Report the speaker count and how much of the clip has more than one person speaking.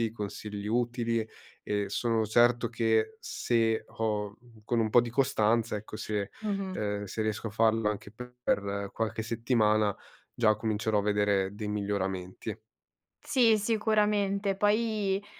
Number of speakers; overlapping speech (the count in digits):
2, under 1%